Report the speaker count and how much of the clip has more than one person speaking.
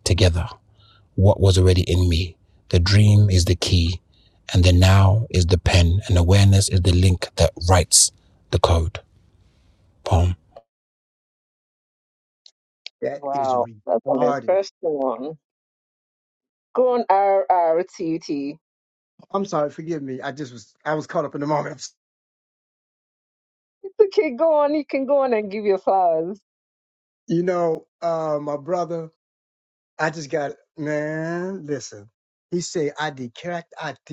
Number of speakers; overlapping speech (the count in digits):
3, about 3%